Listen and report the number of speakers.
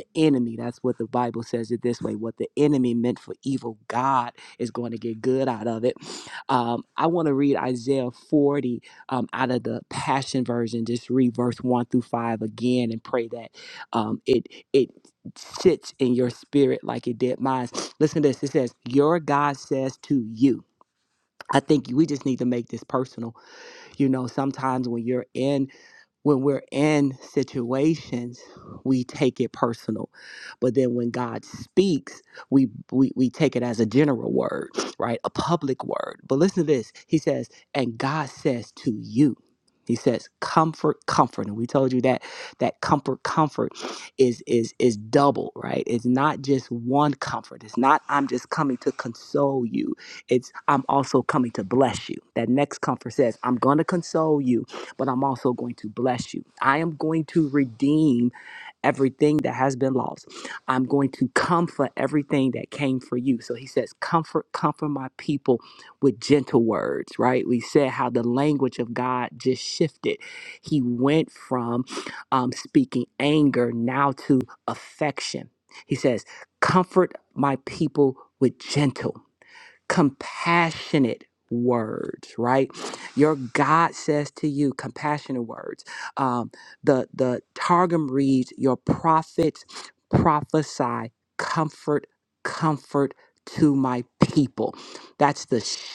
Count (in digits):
1